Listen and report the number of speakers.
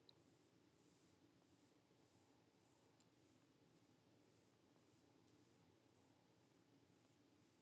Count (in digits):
0